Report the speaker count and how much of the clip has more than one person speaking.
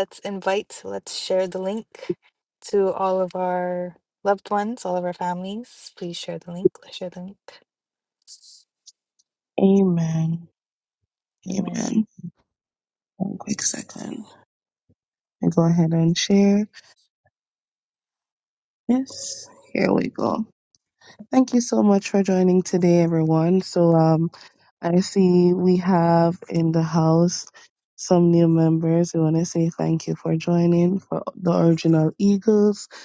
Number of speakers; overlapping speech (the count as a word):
two, about 1%